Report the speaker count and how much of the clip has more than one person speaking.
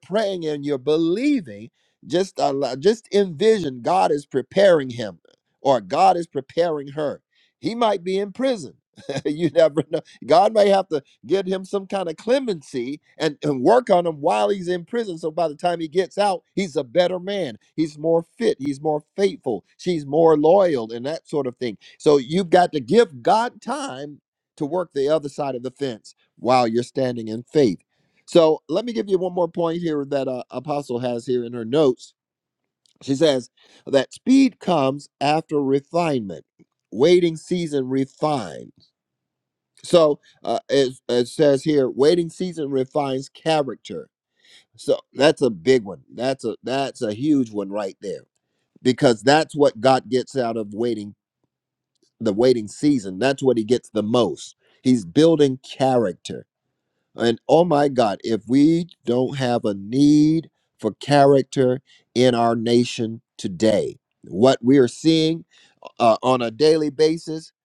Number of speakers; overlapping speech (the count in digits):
1, no overlap